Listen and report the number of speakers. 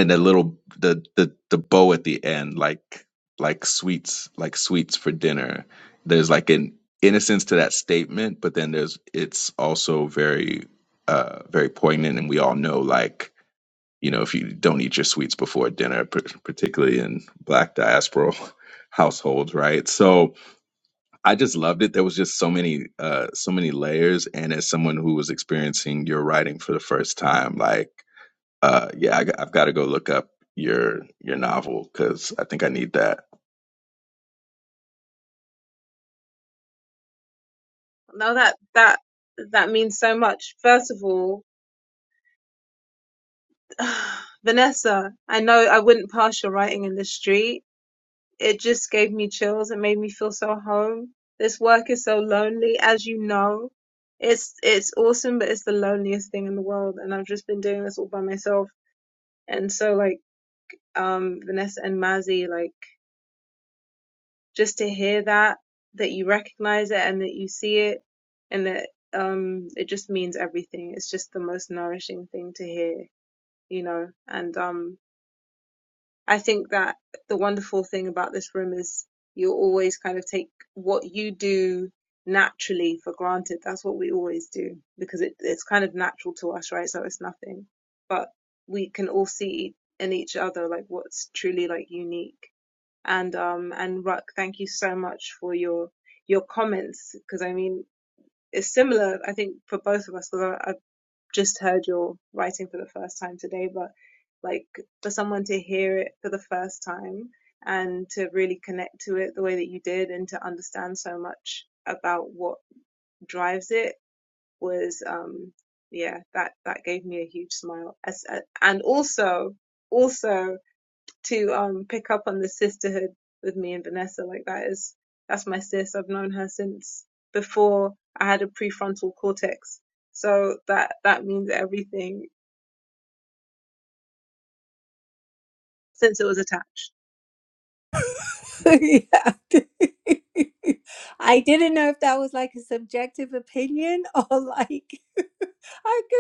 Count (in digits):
3